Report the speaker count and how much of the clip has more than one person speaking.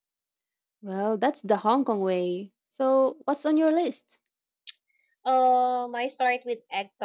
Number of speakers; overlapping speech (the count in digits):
2, no overlap